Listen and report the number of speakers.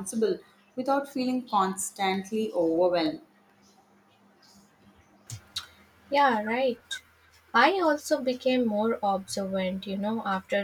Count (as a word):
two